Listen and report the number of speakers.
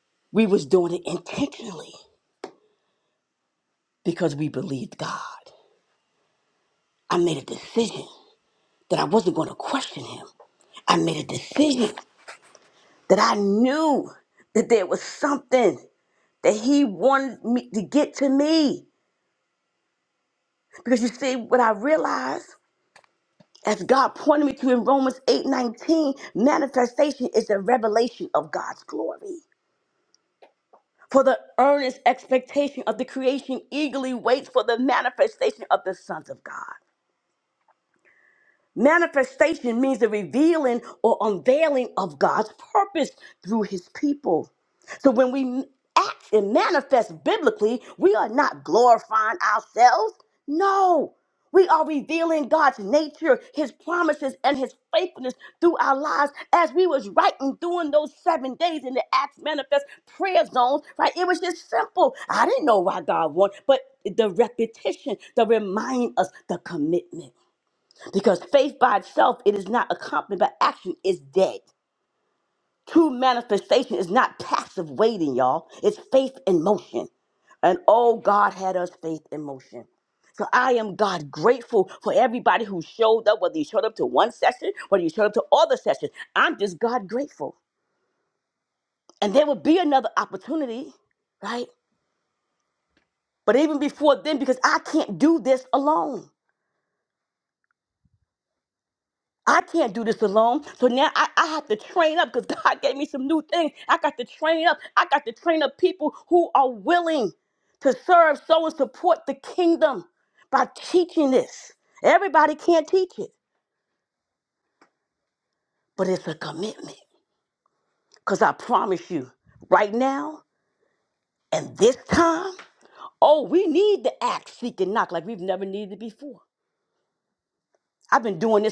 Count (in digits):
1